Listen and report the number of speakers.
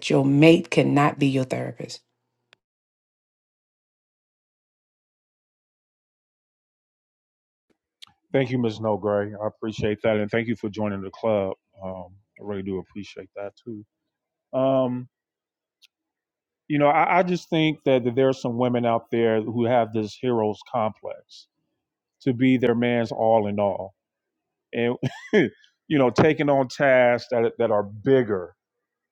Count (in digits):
2